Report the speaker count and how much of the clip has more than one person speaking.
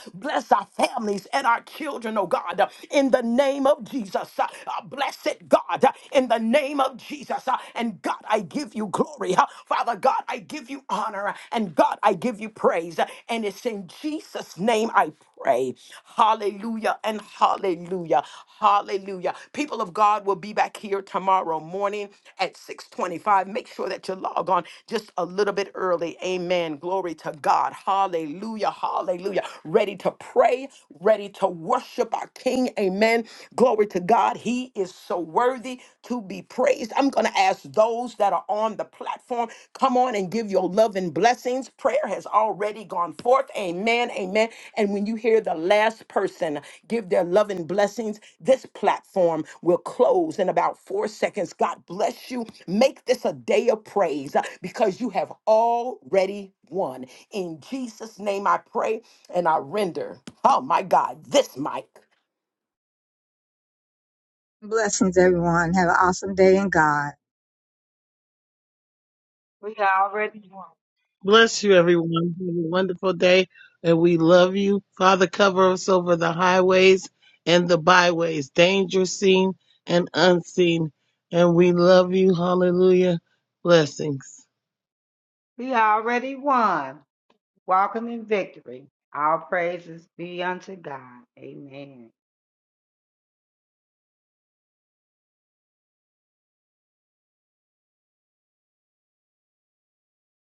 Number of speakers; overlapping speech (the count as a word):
four, no overlap